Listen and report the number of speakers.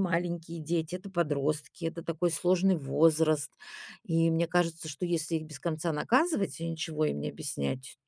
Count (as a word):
one